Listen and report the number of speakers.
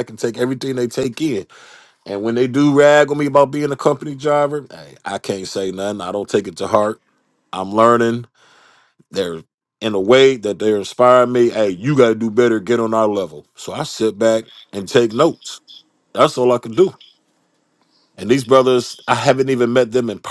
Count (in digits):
1